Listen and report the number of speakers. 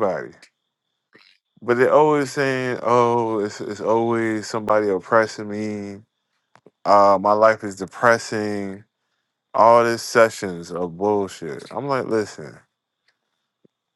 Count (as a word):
one